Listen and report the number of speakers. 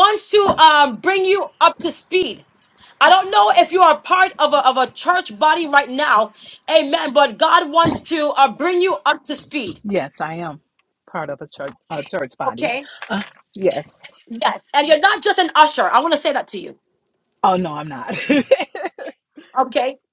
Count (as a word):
two